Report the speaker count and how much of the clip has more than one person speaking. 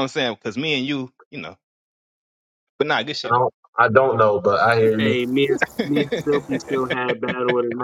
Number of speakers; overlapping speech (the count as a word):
three, about 6%